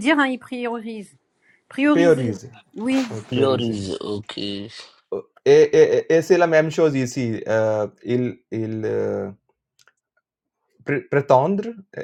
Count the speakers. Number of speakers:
3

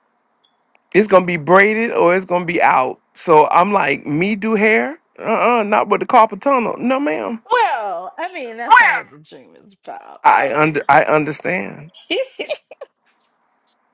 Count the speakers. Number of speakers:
2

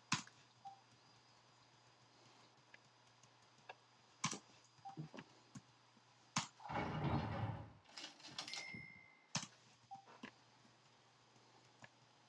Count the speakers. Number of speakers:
0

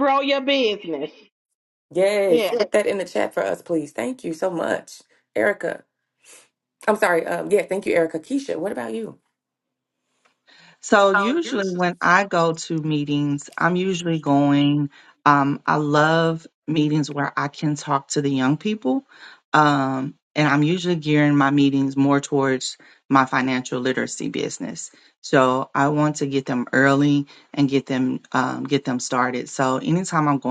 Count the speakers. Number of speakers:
3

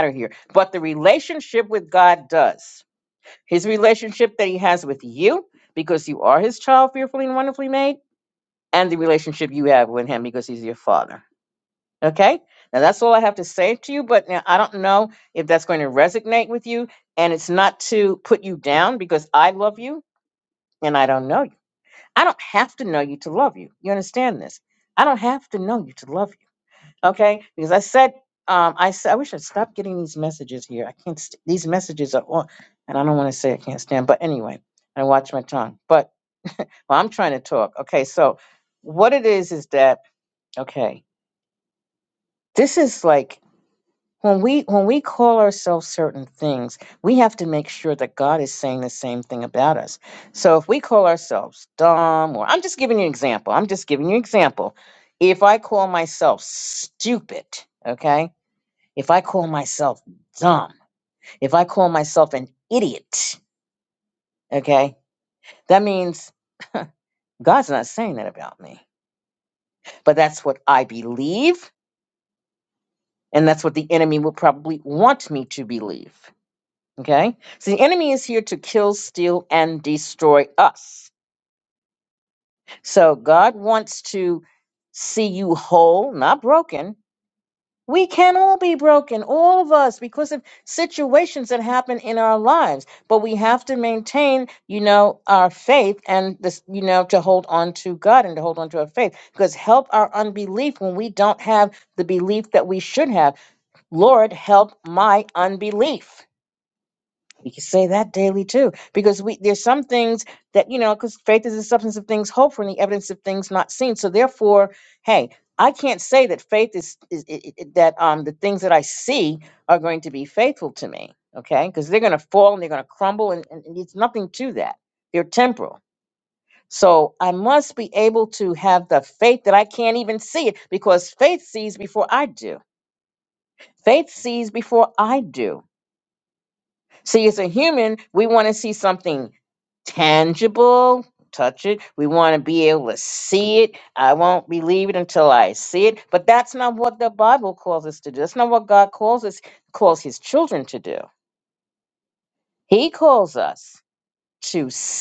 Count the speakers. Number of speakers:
1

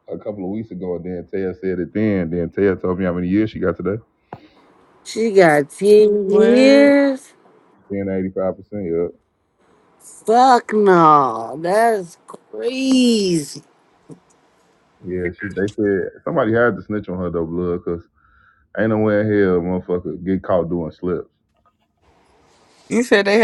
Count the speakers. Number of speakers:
3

